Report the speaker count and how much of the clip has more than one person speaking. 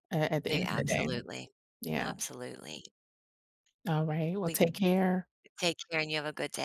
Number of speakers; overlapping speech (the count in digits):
2, about 15%